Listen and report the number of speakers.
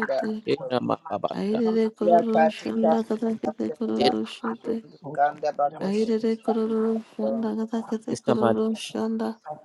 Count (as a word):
three